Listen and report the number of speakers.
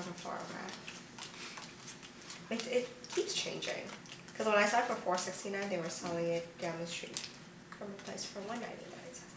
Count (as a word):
one